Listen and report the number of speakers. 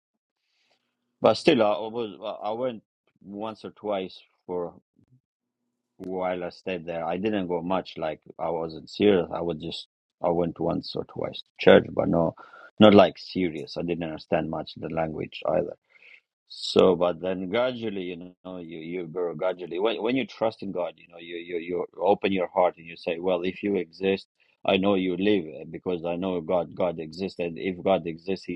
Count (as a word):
one